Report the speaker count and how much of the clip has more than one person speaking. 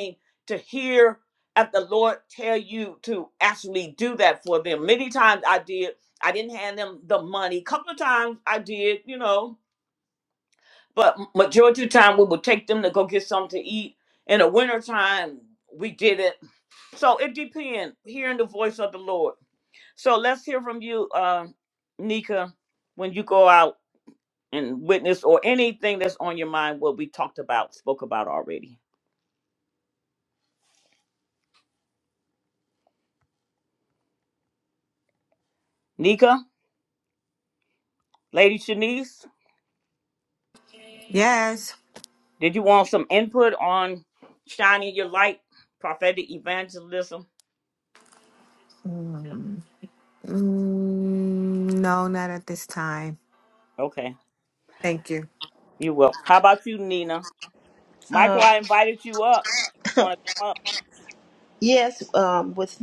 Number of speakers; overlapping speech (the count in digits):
3, about 1%